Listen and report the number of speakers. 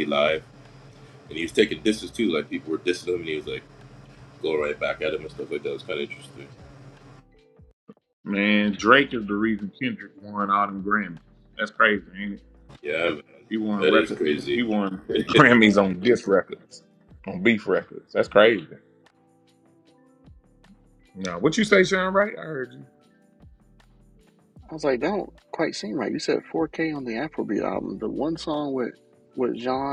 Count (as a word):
three